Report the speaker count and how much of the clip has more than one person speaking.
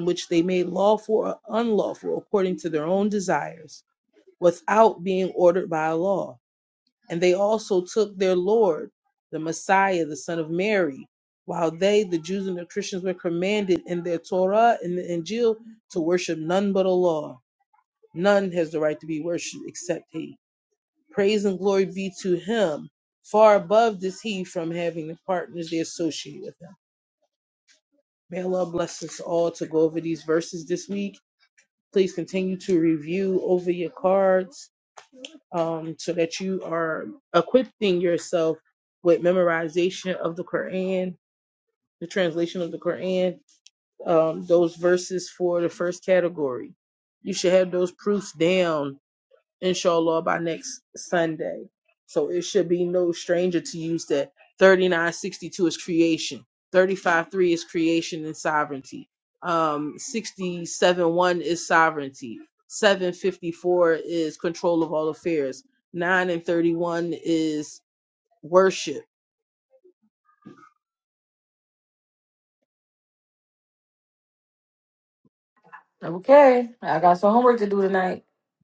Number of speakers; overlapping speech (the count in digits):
2, no overlap